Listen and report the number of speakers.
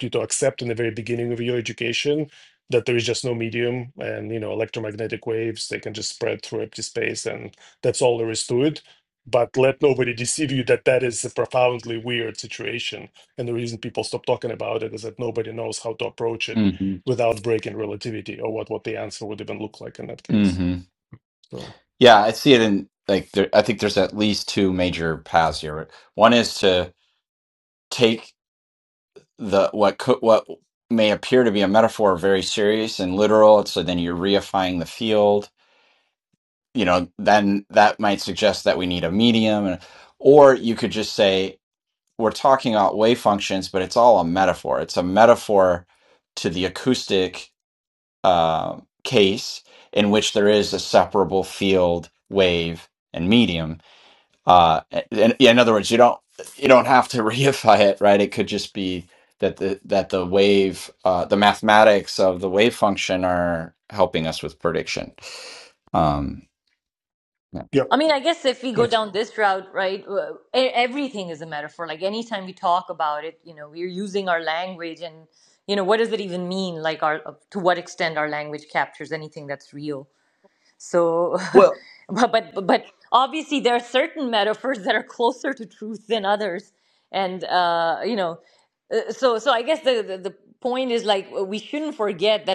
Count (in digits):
3